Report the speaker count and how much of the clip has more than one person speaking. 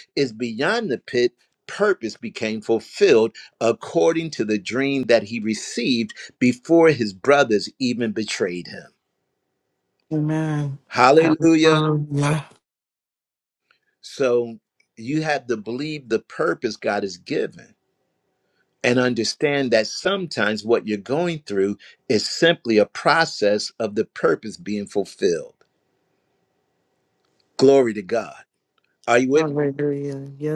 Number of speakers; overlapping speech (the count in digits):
3, about 3%